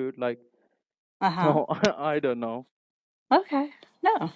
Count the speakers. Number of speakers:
two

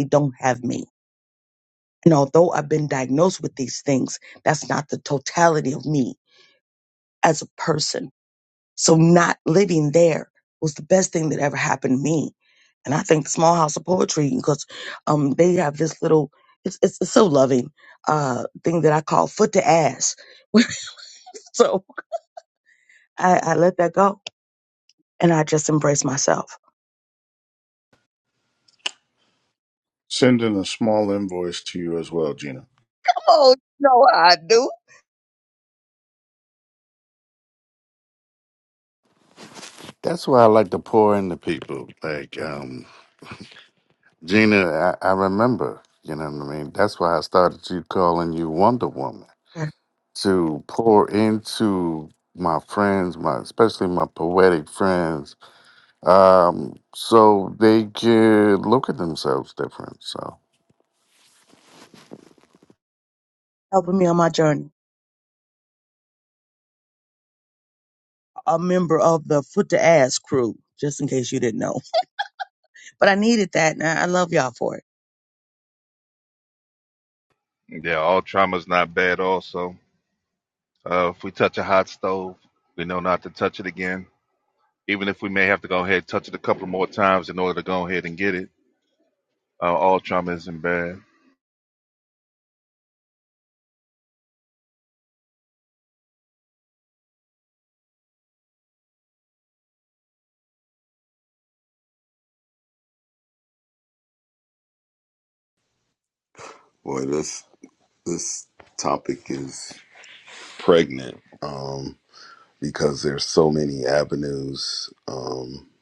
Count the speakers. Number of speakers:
five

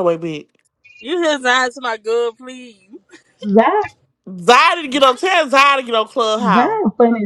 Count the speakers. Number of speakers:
three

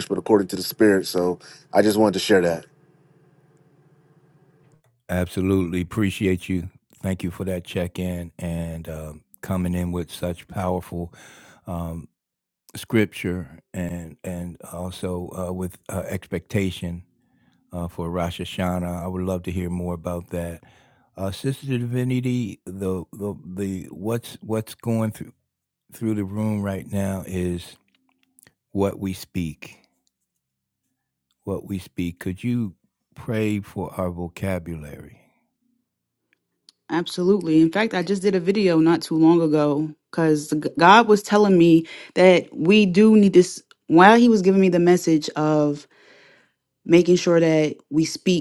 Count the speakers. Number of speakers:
three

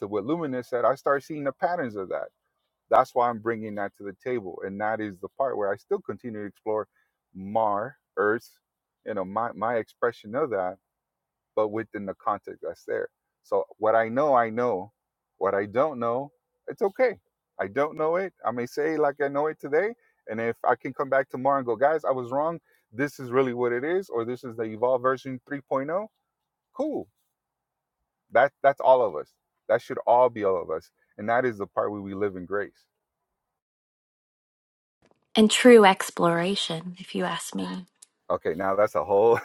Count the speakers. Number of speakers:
two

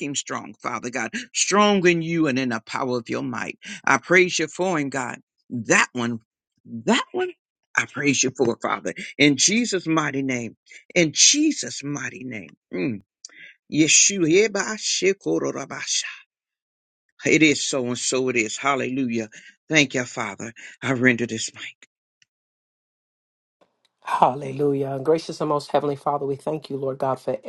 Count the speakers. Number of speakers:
two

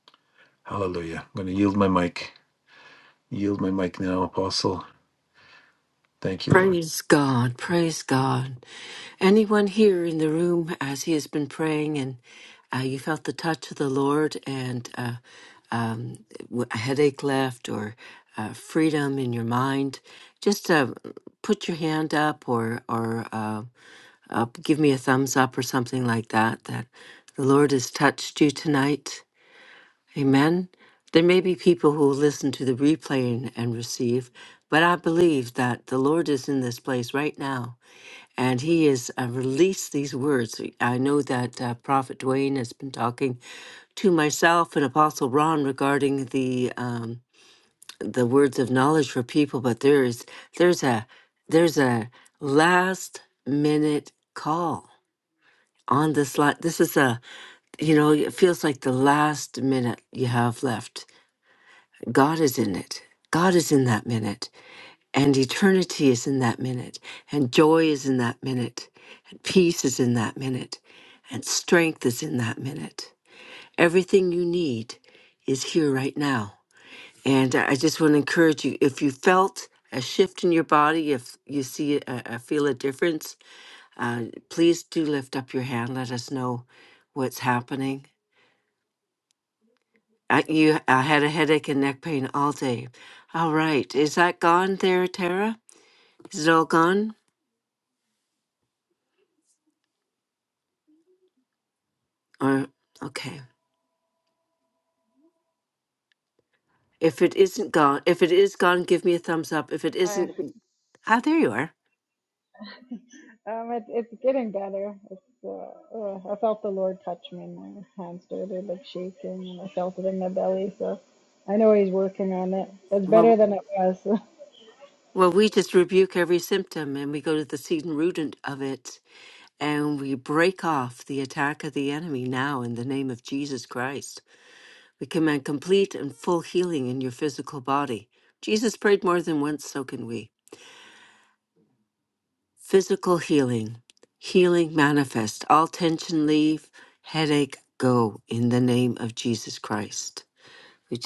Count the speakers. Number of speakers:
three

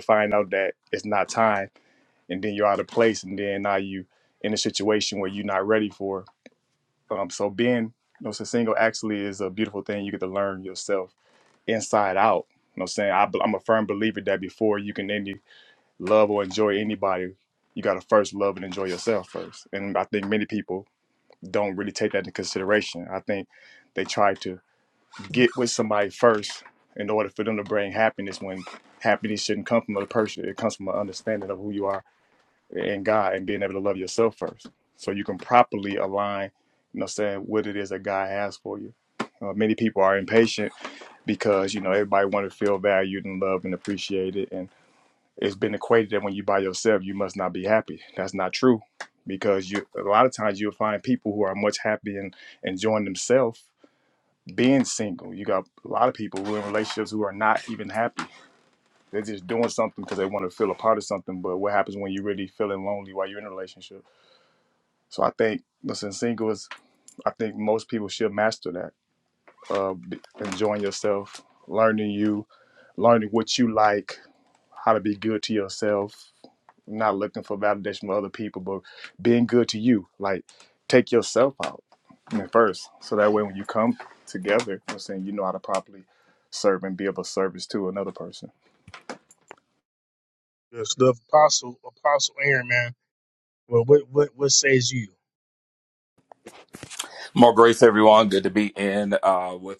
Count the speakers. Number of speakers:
three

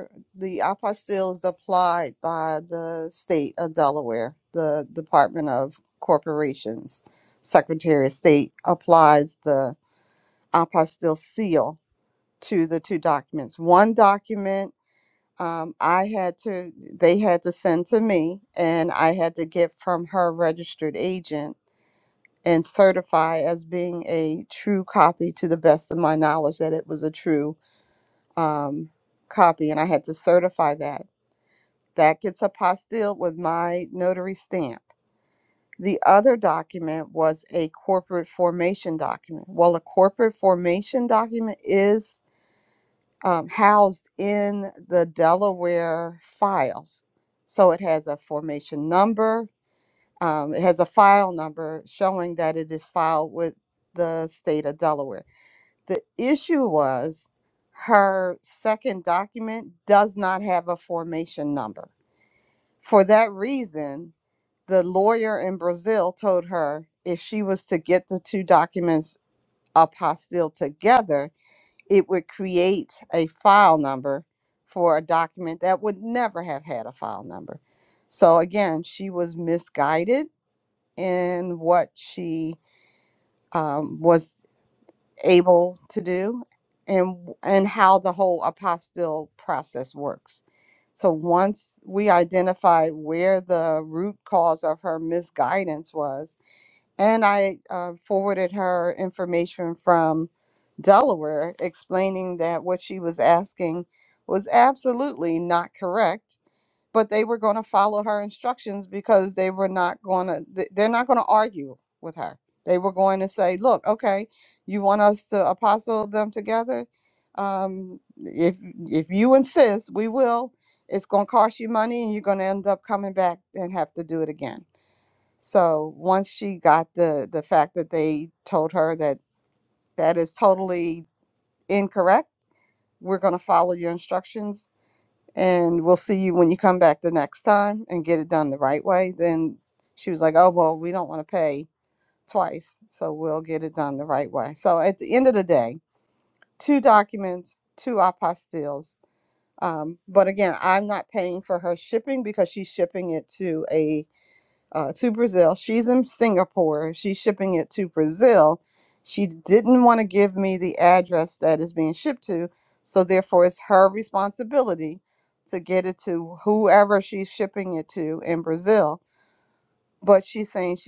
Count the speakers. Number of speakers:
one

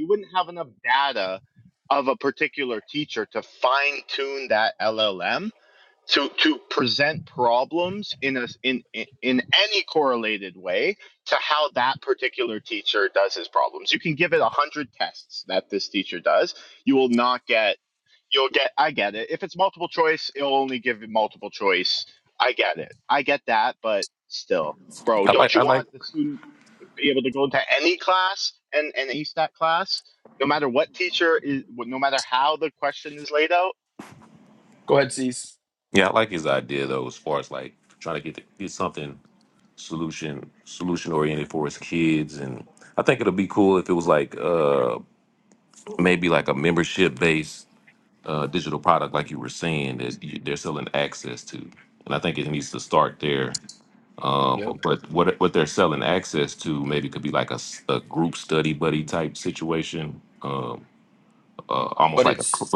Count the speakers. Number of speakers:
three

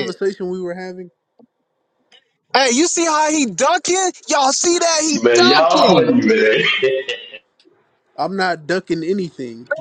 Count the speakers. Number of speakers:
three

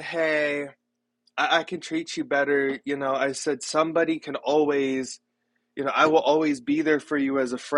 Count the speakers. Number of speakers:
one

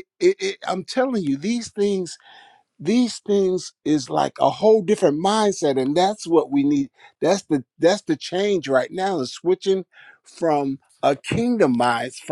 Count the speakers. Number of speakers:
one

